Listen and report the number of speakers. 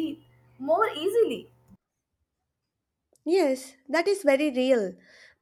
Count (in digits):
2